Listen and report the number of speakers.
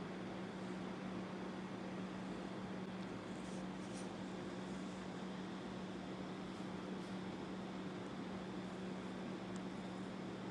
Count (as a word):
zero